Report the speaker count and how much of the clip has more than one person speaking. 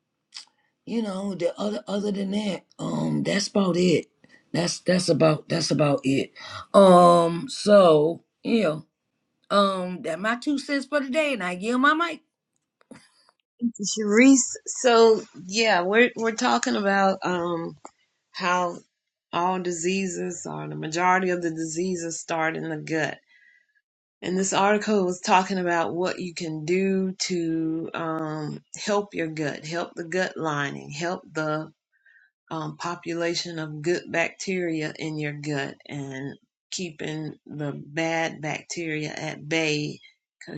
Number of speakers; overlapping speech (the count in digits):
2, no overlap